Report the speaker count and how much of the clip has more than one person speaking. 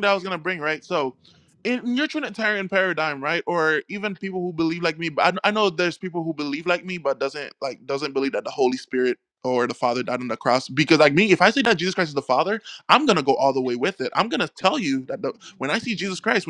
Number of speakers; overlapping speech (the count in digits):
1, no overlap